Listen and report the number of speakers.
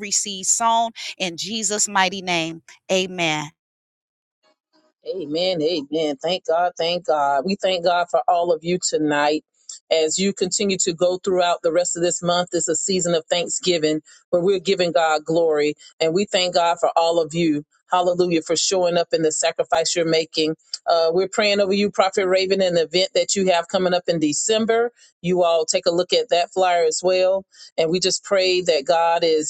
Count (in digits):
2